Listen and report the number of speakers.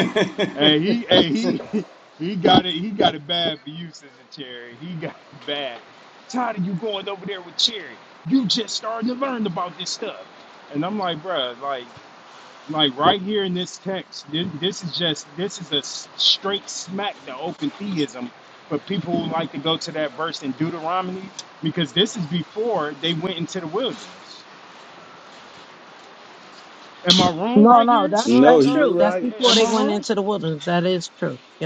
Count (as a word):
three